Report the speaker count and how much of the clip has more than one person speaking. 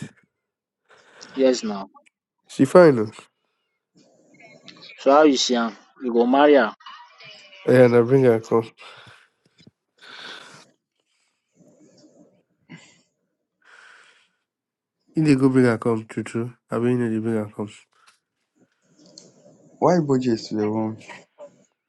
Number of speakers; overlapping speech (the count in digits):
3, no overlap